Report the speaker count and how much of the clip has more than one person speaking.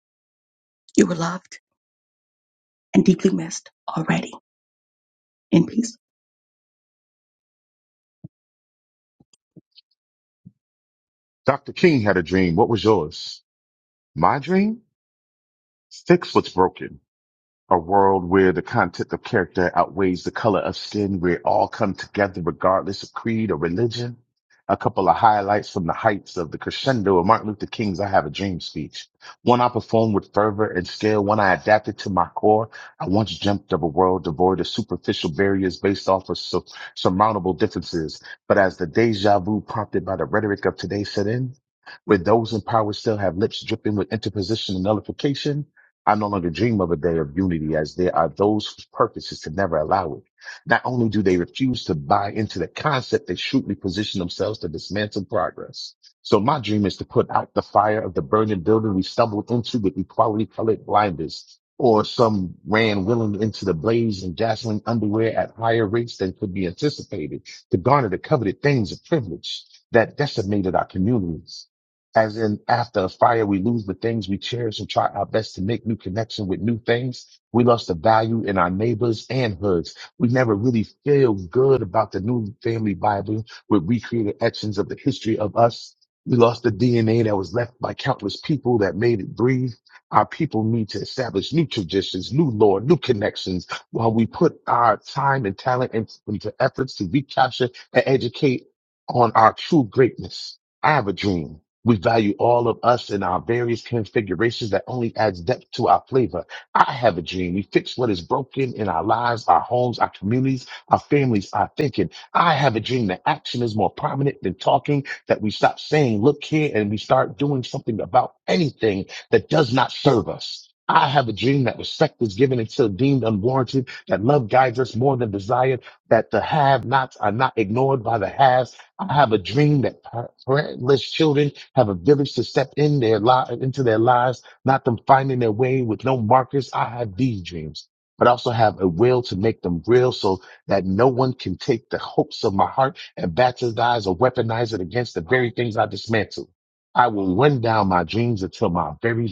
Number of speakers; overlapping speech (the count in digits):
2, no overlap